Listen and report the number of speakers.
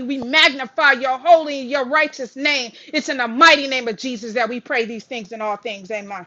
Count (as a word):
one